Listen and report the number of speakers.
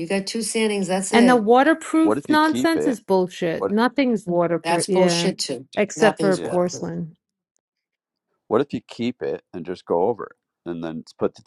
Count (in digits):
3